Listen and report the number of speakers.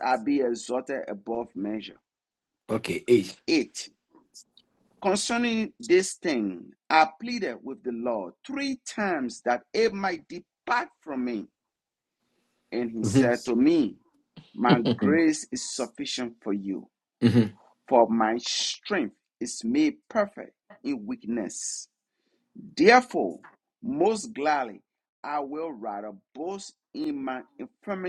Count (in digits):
2